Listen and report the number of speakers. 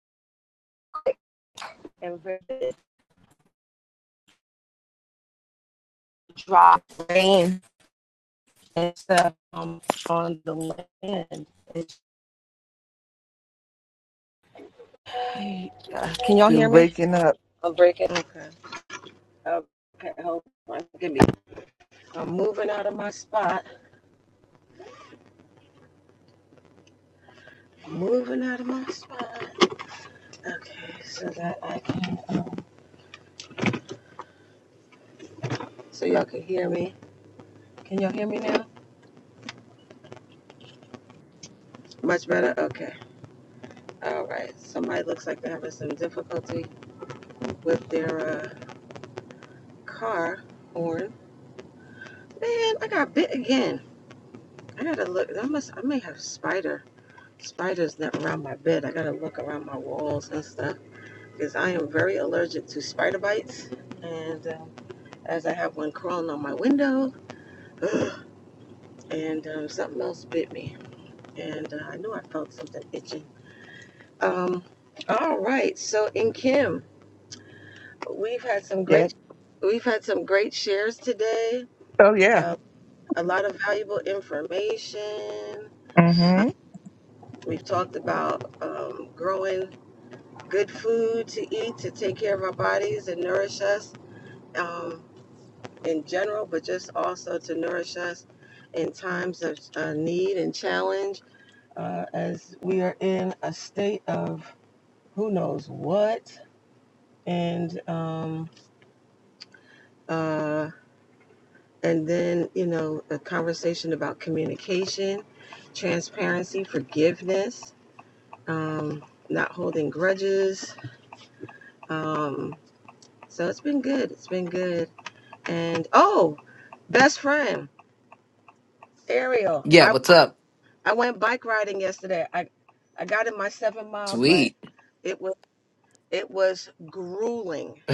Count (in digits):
3